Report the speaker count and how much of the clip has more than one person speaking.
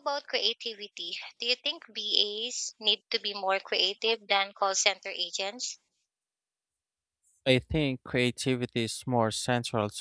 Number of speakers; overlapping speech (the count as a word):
two, no overlap